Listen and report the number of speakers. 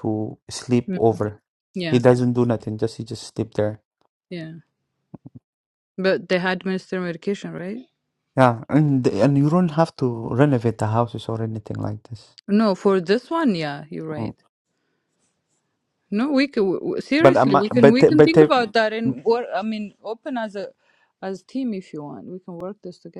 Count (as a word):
two